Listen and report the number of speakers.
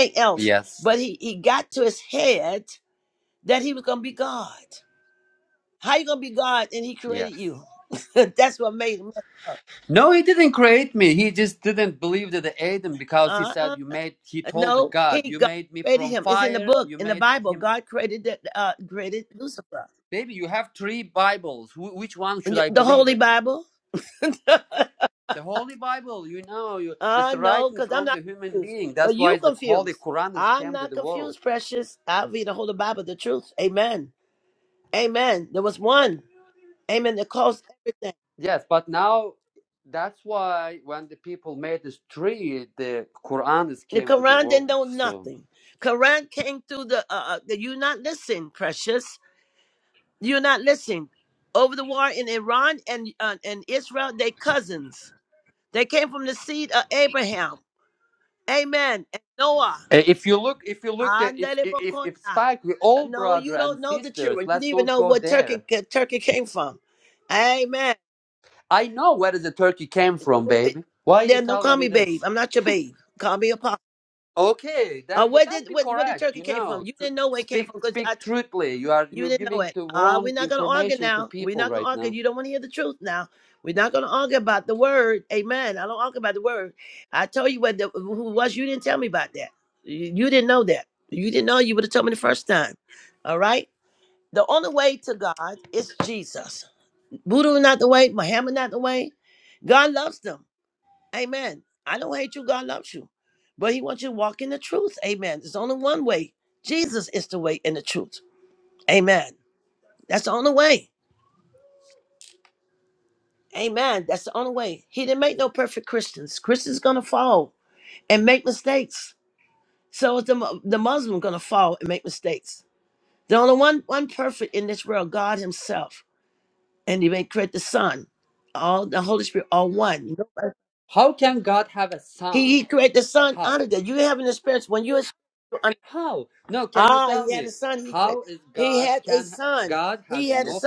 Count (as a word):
two